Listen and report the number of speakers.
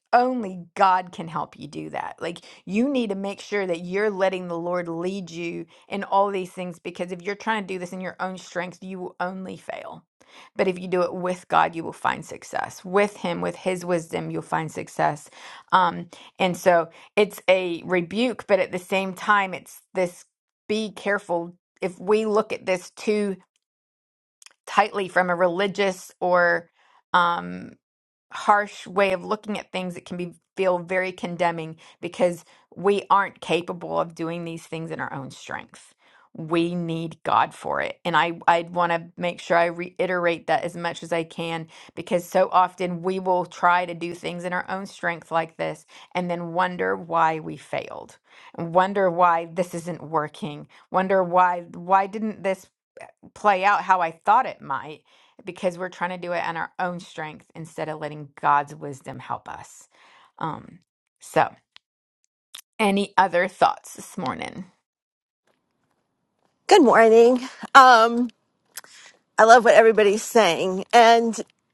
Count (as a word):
two